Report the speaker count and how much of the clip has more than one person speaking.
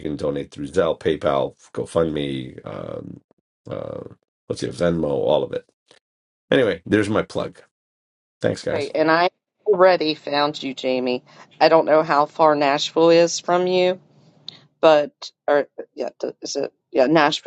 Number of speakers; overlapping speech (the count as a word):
two, about 1%